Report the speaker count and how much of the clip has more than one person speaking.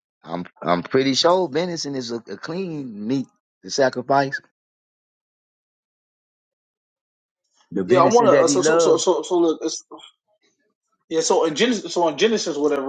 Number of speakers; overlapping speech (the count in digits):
2, about 9%